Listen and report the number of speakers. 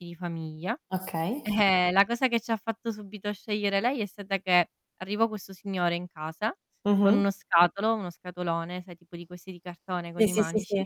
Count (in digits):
2